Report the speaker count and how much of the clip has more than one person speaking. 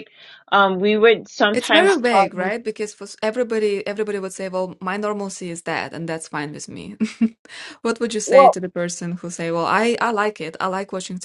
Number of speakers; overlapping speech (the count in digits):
2, about 11%